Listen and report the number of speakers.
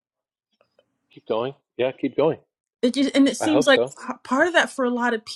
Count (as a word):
two